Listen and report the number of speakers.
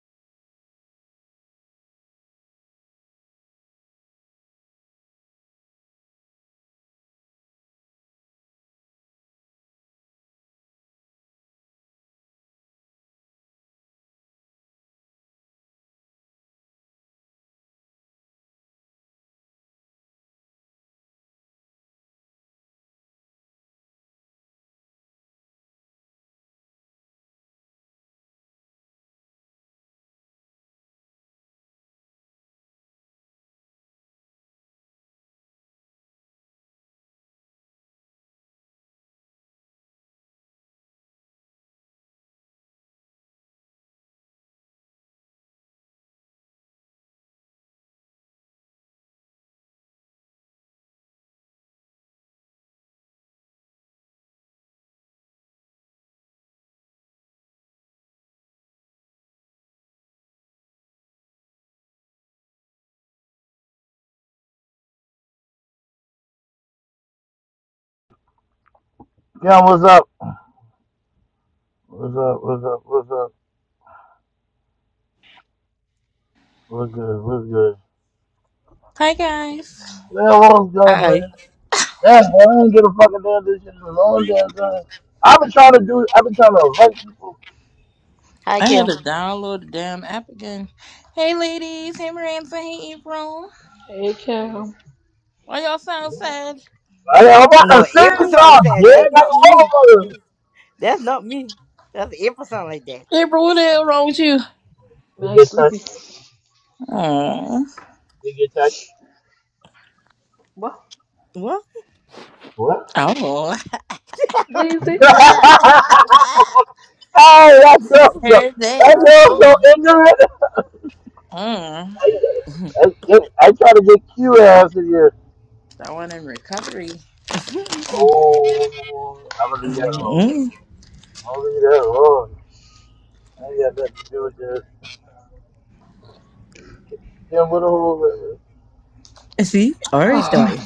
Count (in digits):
4